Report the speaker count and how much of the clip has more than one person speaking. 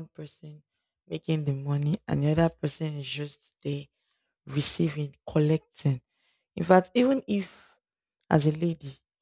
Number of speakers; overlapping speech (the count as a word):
one, no overlap